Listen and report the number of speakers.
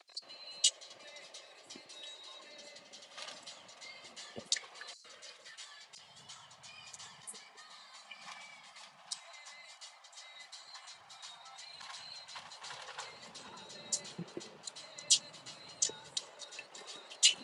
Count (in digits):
0